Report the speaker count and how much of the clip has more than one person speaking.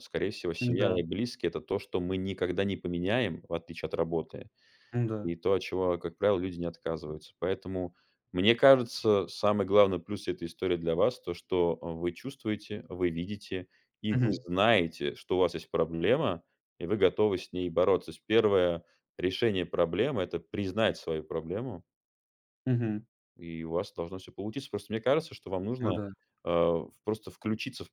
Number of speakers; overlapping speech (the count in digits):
2, about 3%